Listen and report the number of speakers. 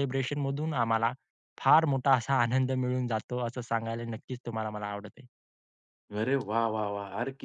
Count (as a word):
two